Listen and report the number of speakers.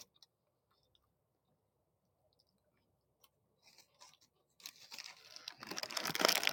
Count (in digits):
0